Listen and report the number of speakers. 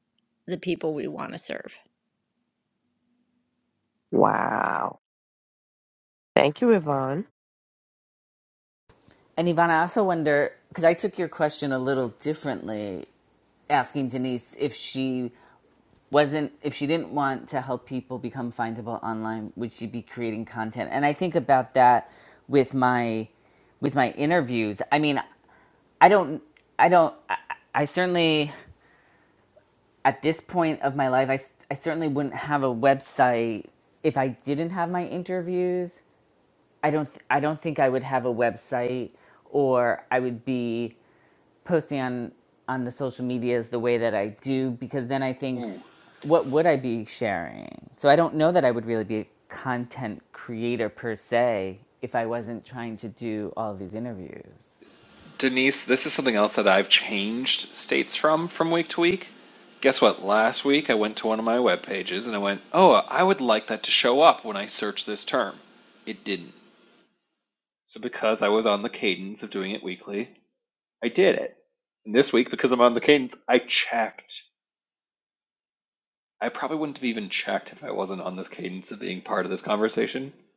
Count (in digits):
4